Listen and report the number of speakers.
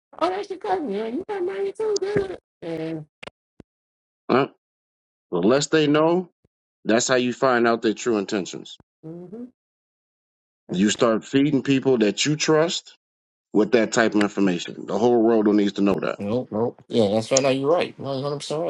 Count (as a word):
three